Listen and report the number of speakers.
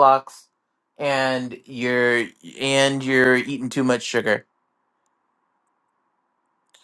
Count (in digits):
1